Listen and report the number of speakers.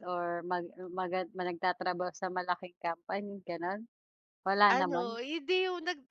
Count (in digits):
2